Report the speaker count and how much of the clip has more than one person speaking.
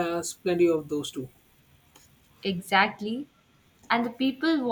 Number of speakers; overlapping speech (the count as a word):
two, no overlap